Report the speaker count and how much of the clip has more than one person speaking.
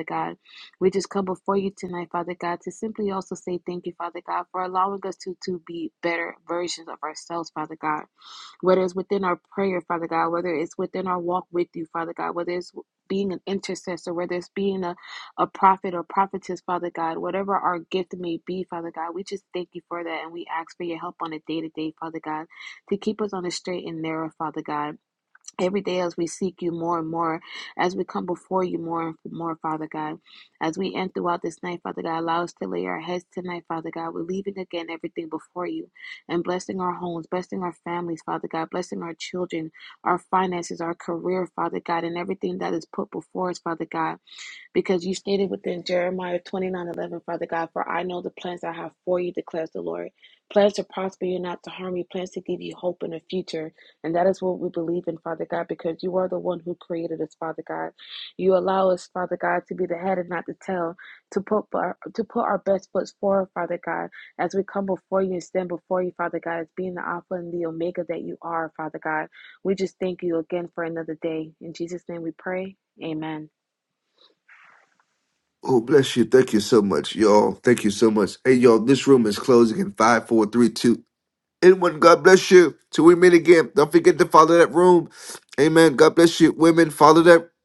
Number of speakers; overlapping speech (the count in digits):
2, no overlap